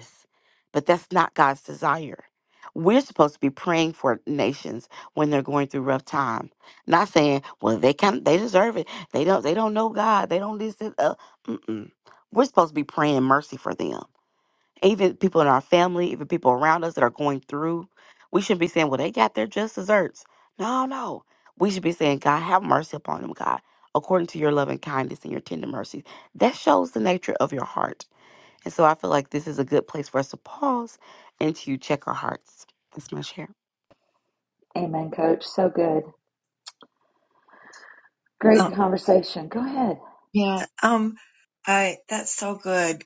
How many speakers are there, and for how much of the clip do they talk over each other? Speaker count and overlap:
3, under 1%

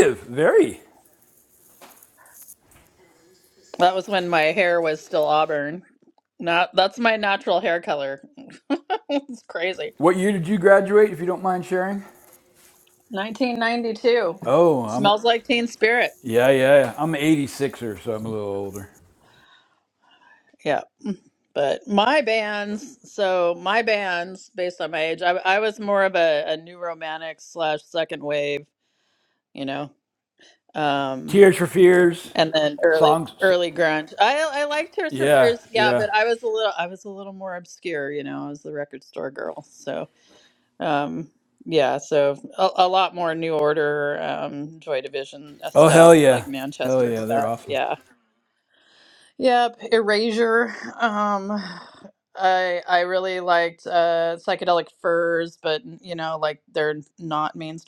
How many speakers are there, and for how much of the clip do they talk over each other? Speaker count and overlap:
2, about 6%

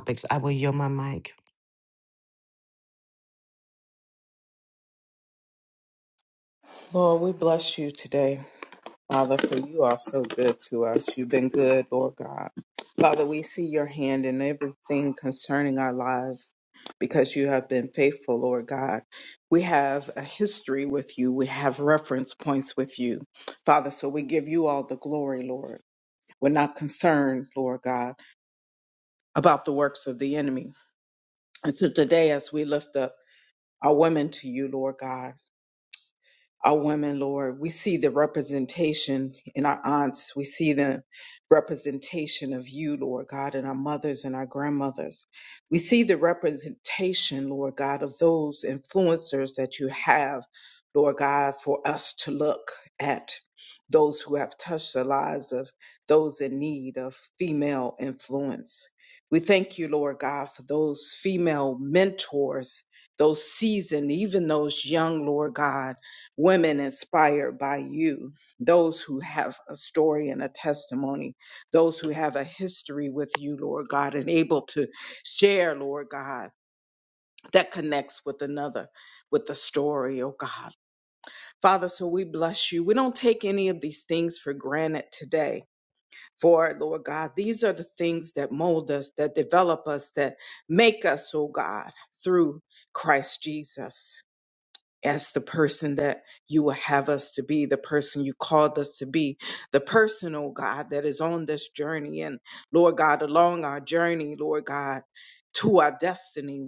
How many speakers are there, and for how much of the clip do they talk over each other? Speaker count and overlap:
2, no overlap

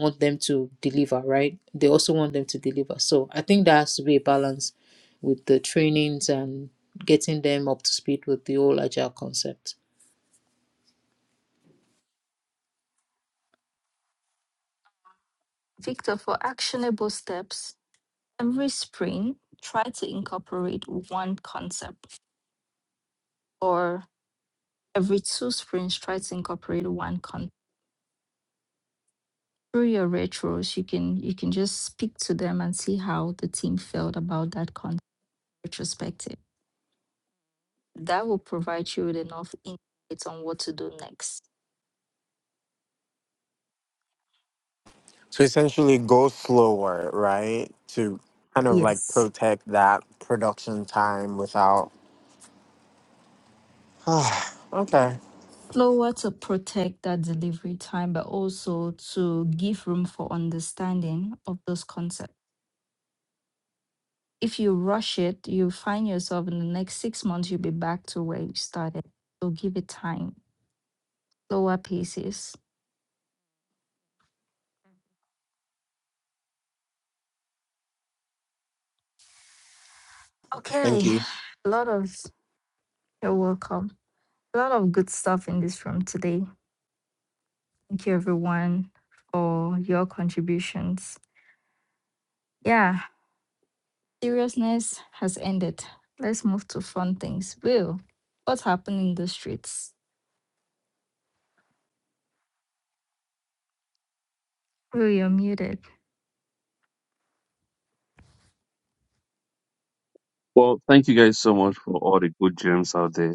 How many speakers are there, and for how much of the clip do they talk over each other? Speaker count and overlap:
4, about 1%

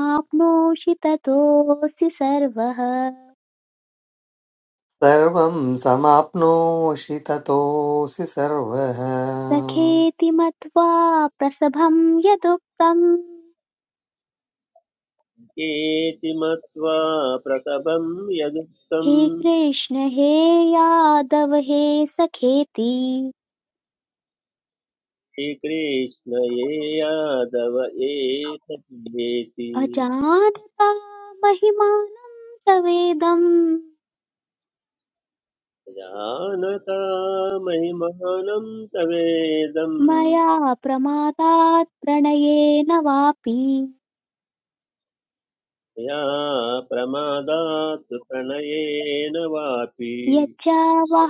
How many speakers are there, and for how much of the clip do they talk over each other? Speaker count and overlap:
3, about 1%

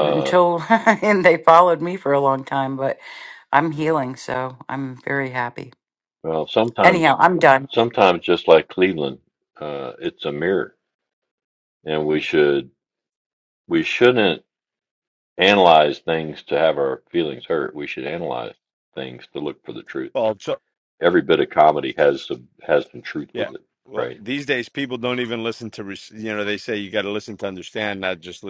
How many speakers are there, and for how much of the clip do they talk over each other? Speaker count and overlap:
3, about 4%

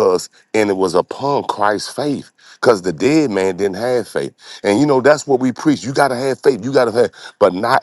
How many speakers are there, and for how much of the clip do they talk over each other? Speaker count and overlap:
1, no overlap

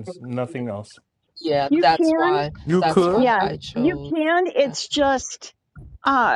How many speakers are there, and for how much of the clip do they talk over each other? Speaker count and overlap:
3, about 35%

